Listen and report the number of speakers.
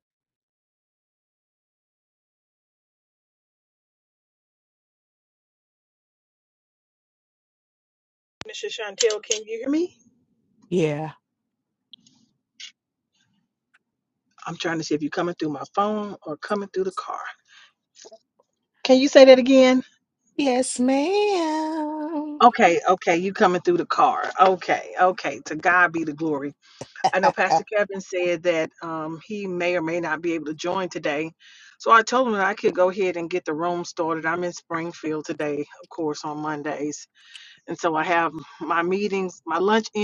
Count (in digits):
2